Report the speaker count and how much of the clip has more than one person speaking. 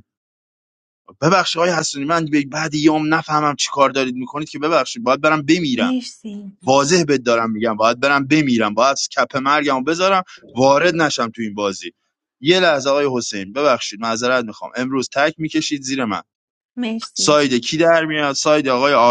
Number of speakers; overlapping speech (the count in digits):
2, about 2%